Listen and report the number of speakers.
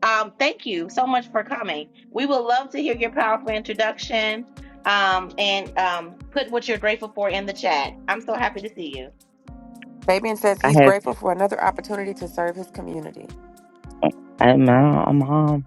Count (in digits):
3